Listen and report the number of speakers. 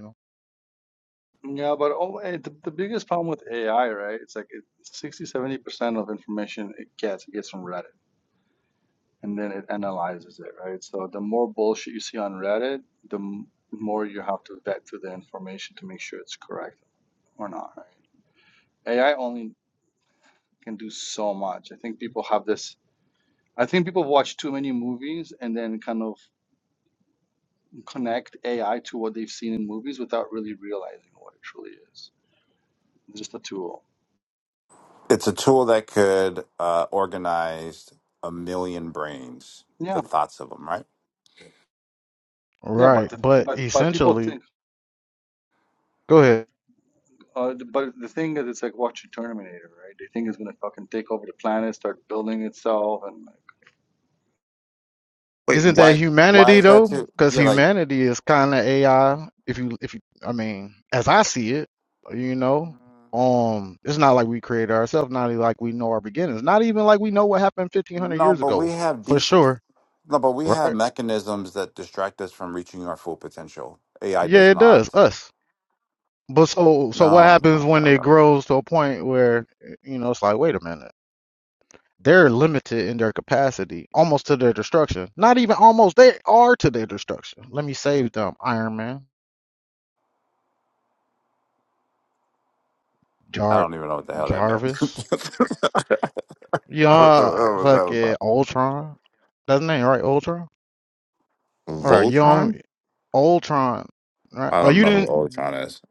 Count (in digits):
3